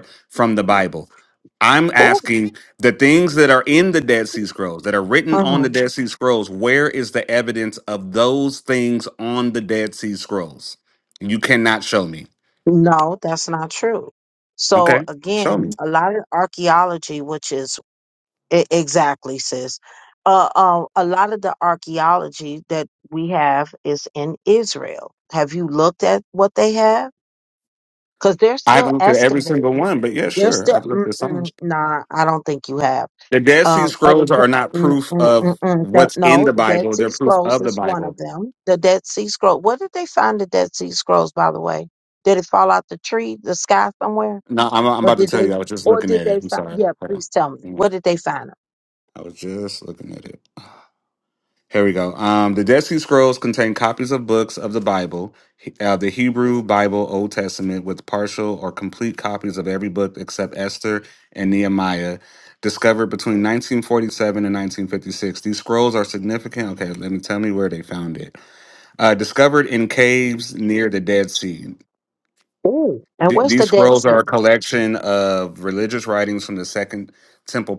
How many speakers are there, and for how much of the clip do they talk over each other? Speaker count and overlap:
2, about 14%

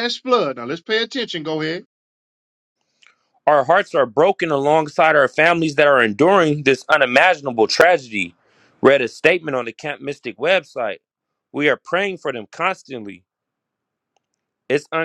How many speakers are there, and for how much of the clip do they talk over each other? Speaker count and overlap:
2, no overlap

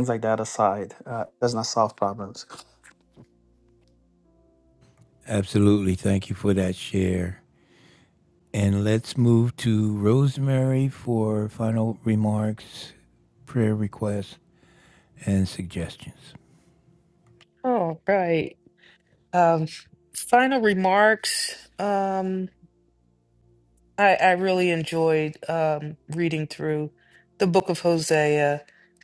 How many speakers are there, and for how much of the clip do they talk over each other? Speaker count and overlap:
3, no overlap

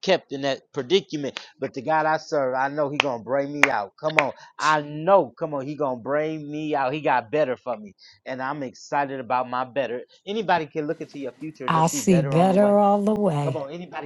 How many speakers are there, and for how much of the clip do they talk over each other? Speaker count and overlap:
2, about 9%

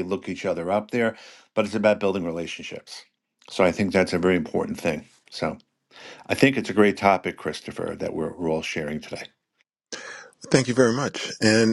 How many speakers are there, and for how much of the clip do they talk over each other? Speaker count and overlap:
2, no overlap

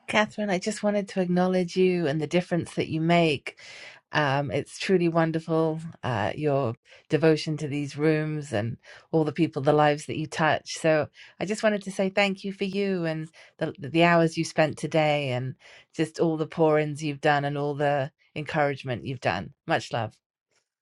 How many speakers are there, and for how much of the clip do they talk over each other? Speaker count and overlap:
1, no overlap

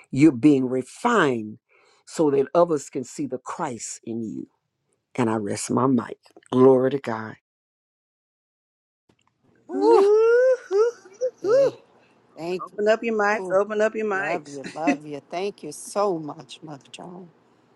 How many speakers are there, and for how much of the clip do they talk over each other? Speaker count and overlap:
3, about 6%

